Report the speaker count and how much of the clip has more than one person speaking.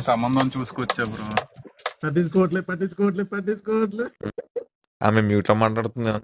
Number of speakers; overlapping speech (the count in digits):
3, no overlap